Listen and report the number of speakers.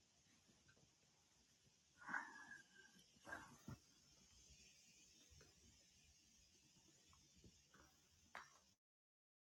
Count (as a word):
zero